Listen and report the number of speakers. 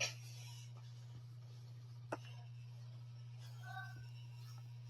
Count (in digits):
0